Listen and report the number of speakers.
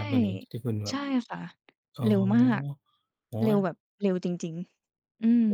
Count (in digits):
2